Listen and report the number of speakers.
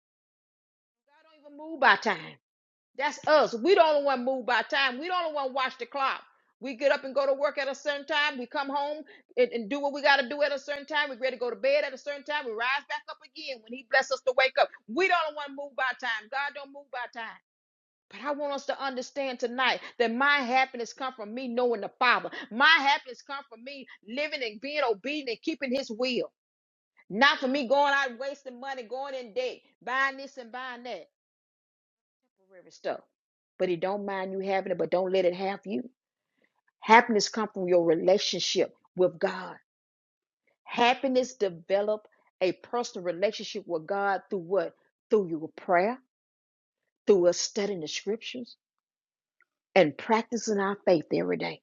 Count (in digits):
1